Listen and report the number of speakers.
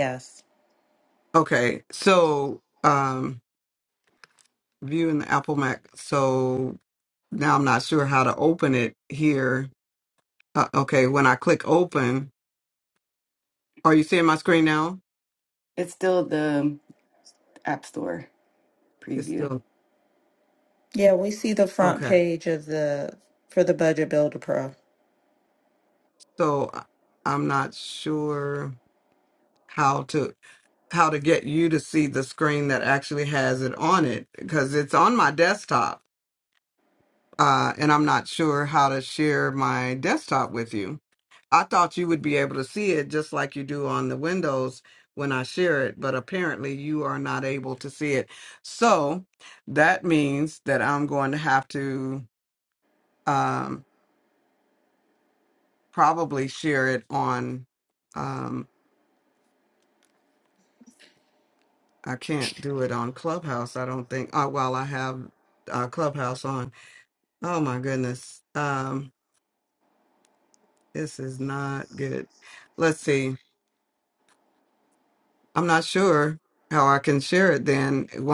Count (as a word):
three